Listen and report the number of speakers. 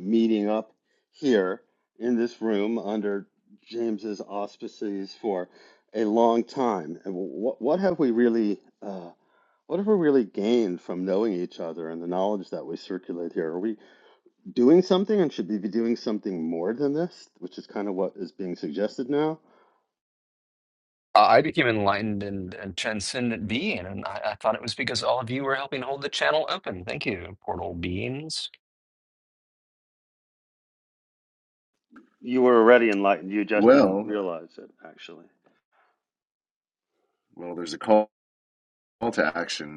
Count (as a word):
three